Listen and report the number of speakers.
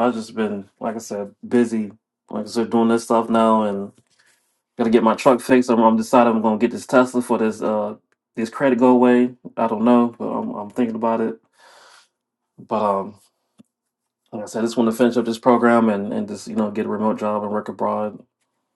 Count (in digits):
1